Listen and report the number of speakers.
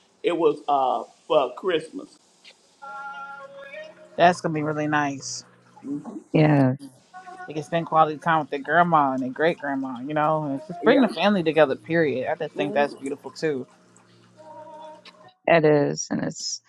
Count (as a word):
three